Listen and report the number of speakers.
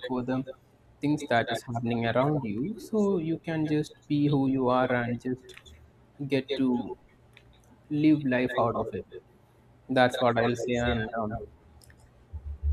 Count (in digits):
1